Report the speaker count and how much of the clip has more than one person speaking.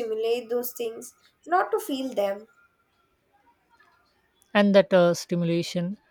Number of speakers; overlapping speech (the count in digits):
2, no overlap